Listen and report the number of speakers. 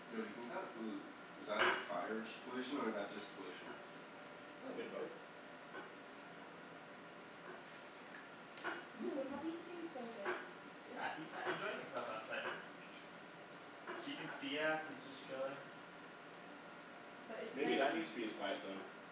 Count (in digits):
4